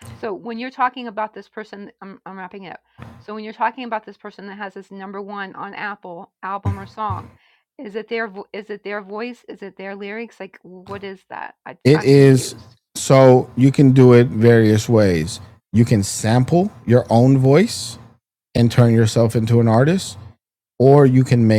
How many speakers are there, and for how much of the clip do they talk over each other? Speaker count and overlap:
two, about 3%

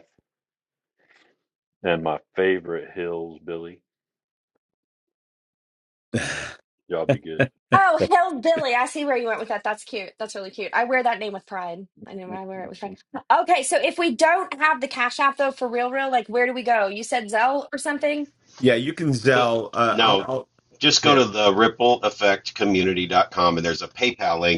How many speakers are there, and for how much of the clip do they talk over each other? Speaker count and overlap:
four, about 3%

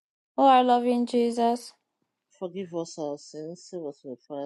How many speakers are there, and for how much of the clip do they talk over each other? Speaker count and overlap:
two, no overlap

